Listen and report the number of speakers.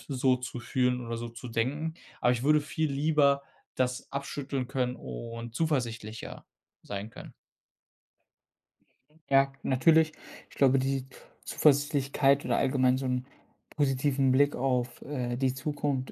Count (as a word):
two